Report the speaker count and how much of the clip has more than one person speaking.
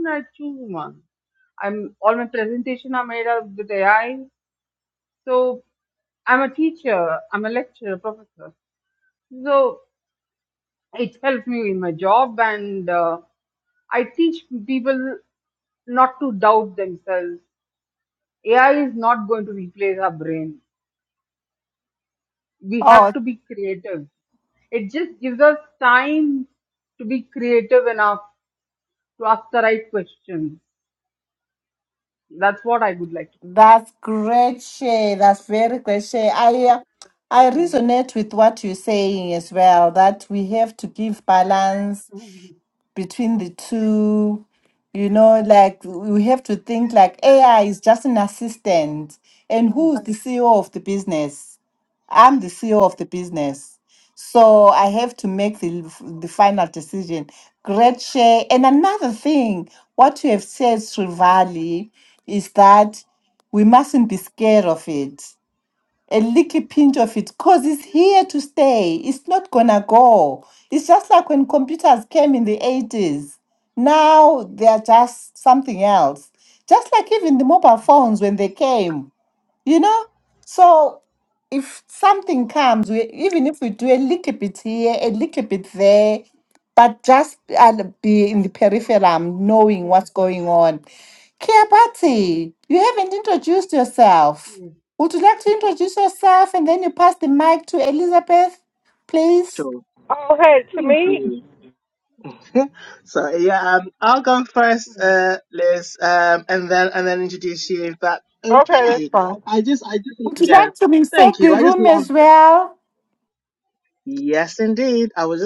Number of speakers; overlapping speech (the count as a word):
four, about 3%